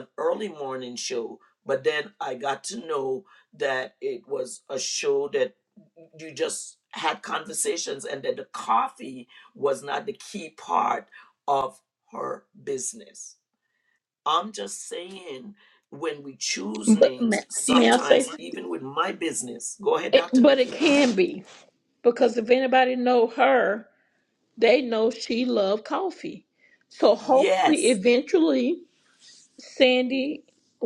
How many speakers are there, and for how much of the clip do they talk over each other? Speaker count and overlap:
two, about 9%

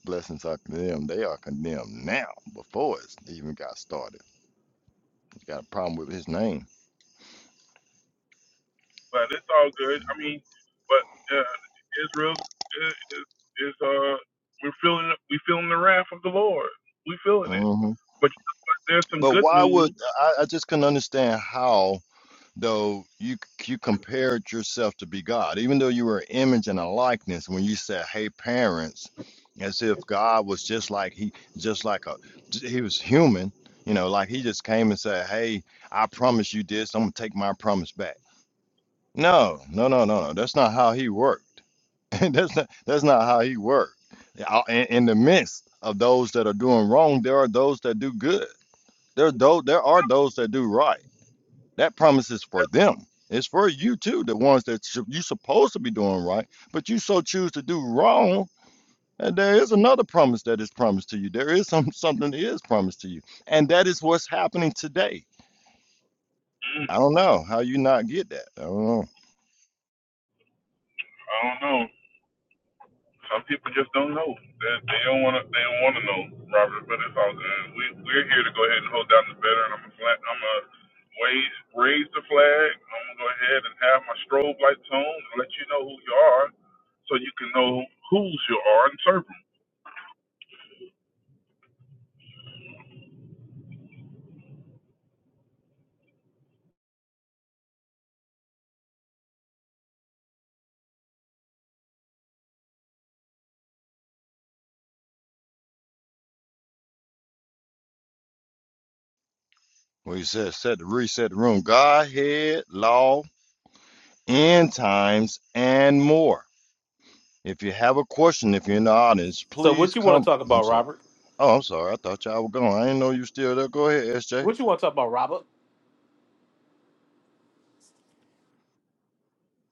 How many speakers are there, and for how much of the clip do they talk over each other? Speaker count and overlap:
three, about 2%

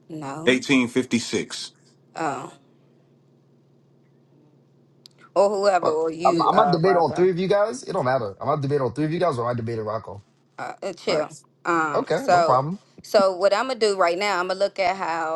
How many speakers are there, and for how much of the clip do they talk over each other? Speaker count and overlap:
three, about 15%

